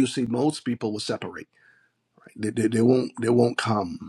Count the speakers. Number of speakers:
1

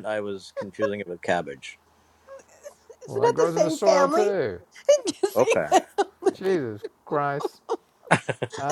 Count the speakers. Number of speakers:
3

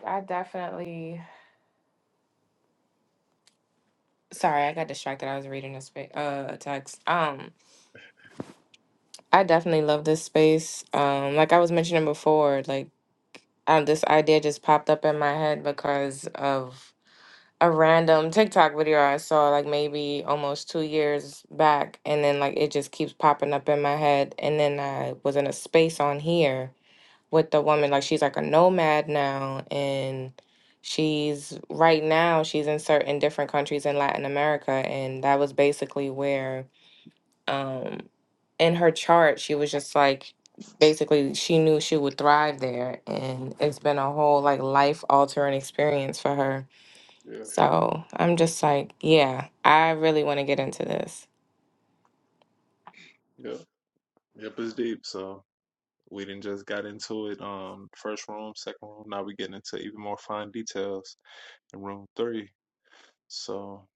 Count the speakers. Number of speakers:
2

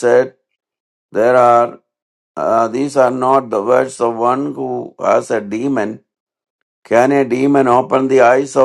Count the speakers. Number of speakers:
1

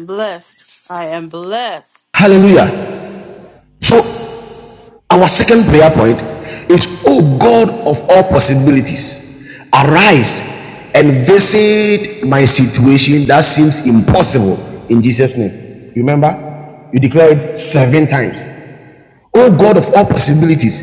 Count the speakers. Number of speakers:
2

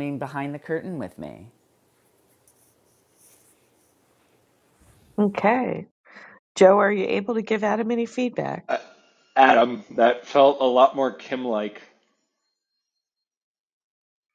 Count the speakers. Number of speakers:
3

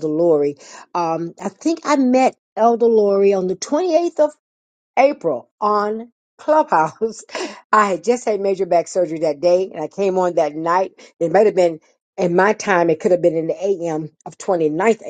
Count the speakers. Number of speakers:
1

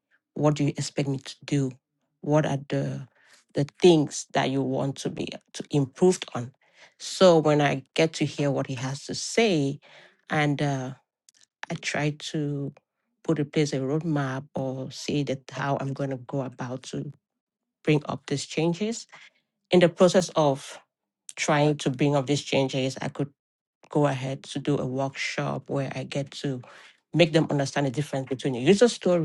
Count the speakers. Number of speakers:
1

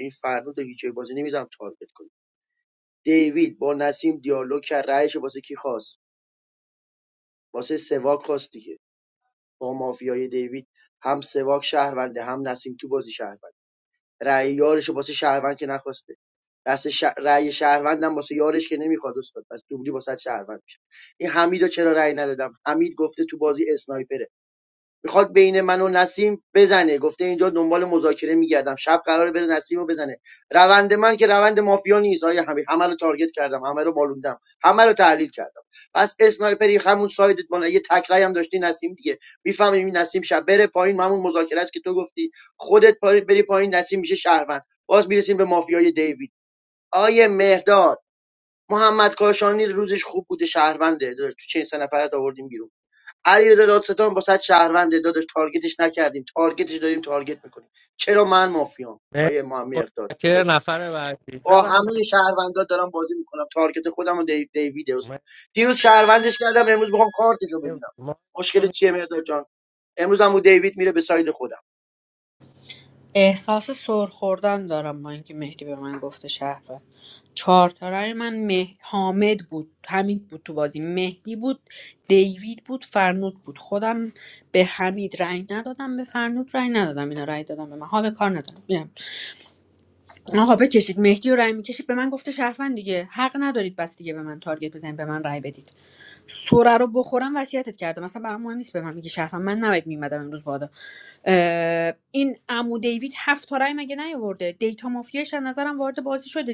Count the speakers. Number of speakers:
3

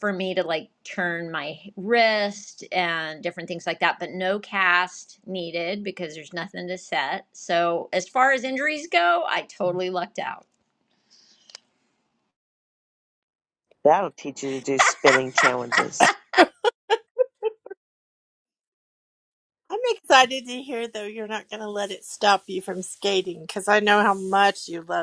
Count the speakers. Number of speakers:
3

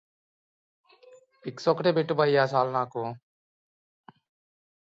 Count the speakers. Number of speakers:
1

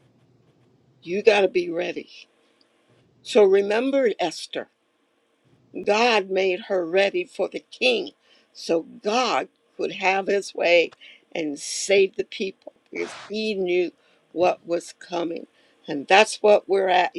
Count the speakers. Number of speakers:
1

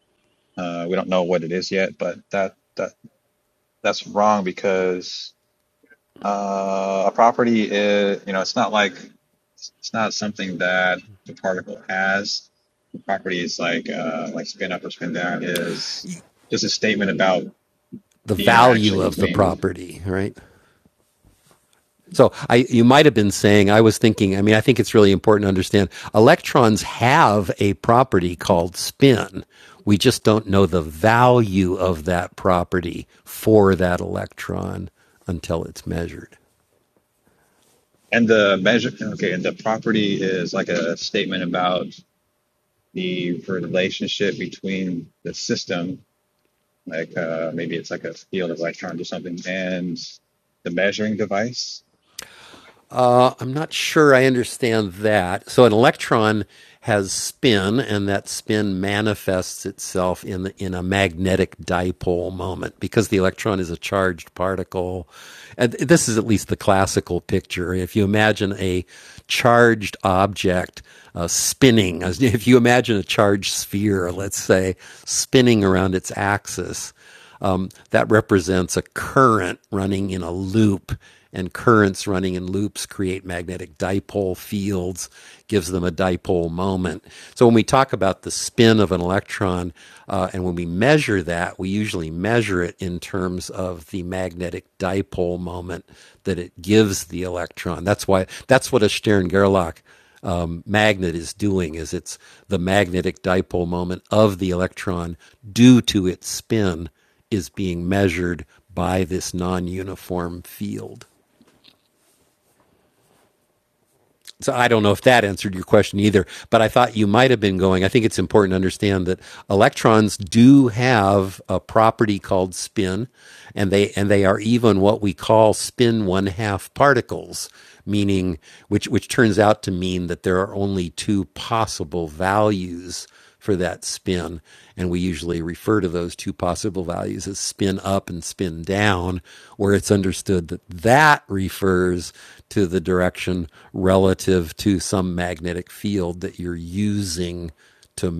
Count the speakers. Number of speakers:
2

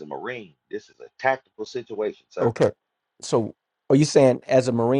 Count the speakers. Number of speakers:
2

